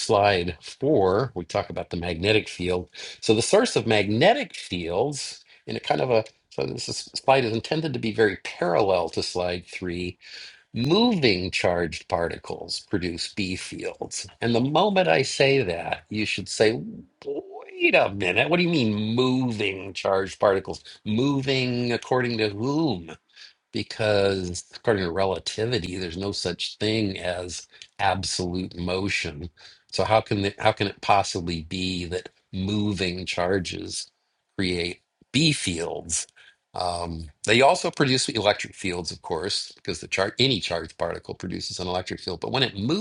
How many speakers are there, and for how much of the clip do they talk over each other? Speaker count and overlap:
one, no overlap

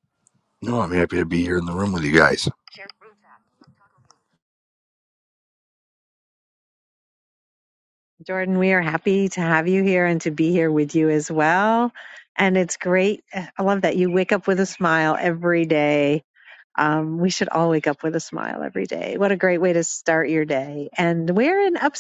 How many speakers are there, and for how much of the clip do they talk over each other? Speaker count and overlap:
two, no overlap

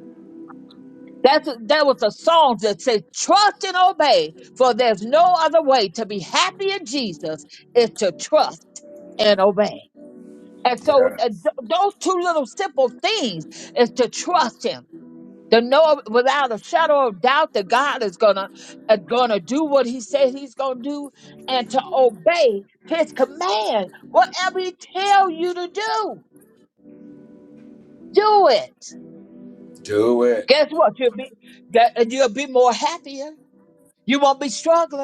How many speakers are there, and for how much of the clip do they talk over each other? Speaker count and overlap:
two, about 1%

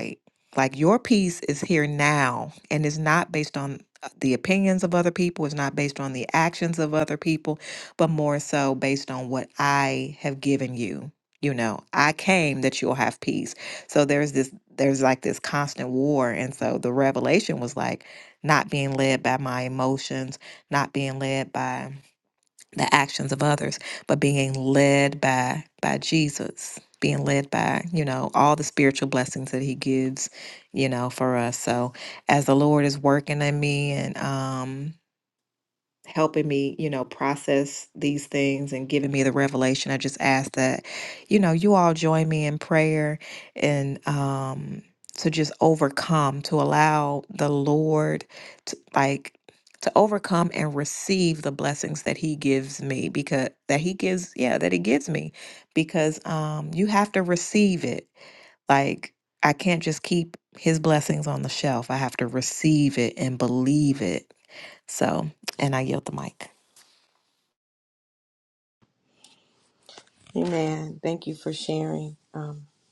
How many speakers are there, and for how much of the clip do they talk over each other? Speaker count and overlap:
two, no overlap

